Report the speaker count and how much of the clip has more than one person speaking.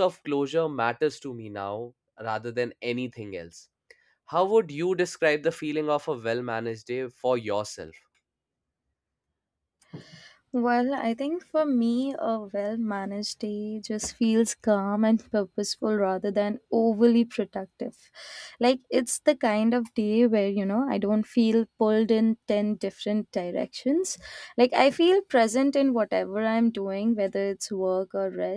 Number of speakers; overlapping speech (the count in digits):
2, no overlap